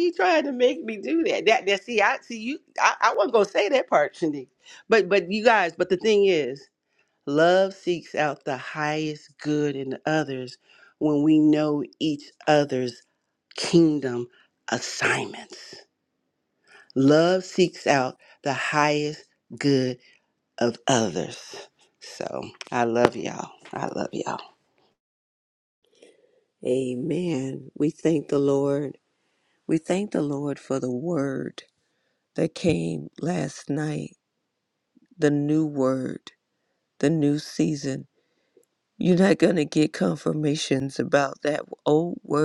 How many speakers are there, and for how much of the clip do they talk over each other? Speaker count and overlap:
two, no overlap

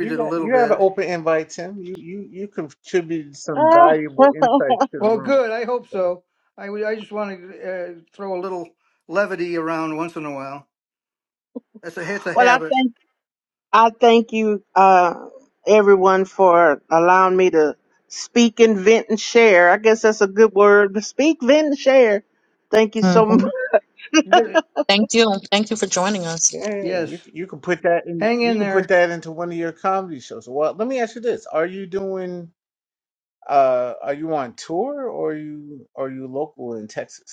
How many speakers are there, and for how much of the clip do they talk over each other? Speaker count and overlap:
four, about 9%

